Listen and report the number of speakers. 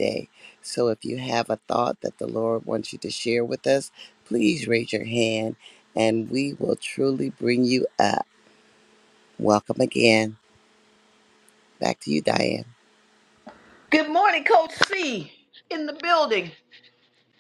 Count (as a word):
two